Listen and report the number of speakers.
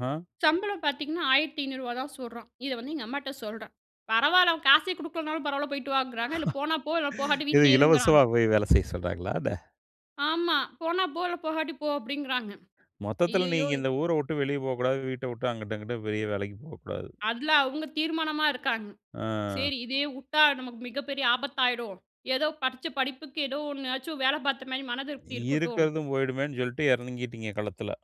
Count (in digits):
2